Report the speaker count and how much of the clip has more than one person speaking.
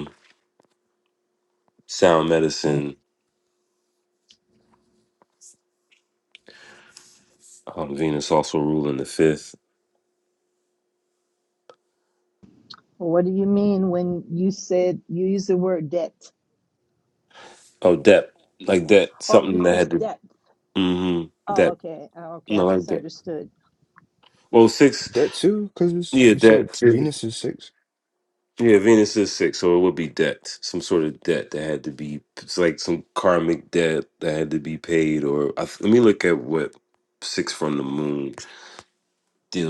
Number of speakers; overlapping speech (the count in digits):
3, about 6%